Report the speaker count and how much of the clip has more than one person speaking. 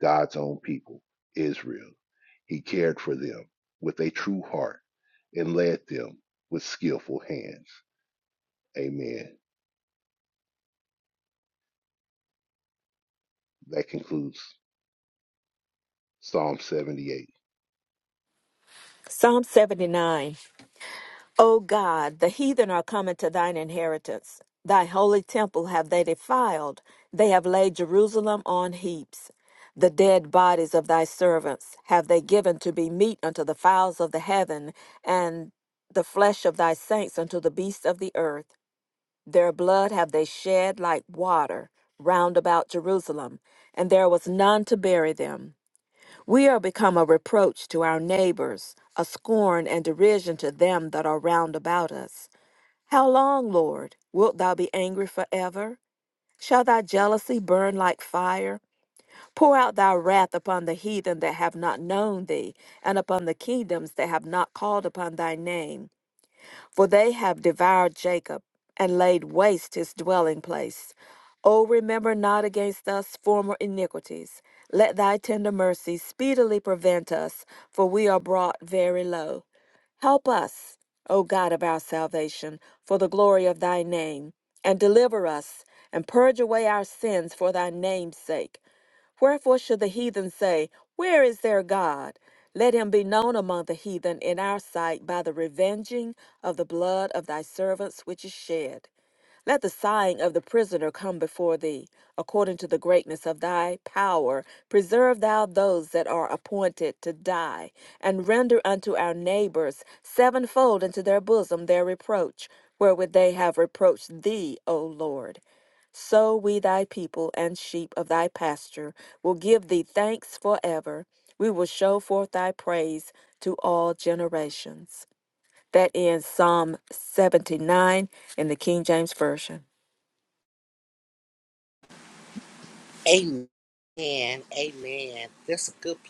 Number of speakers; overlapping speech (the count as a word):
three, no overlap